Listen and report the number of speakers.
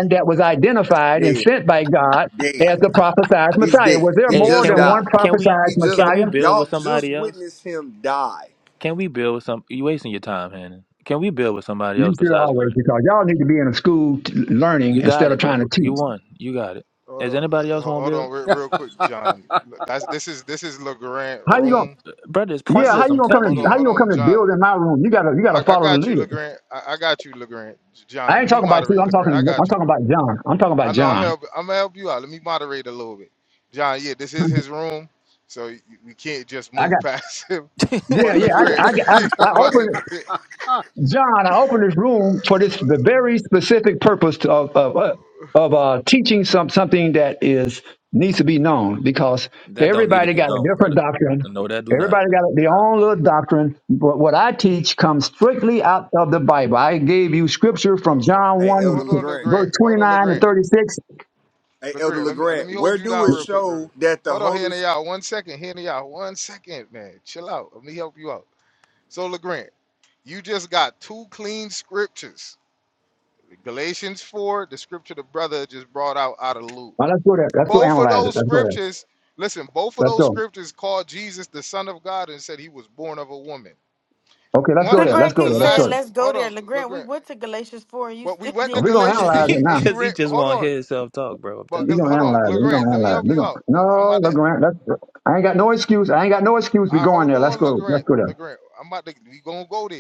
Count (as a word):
five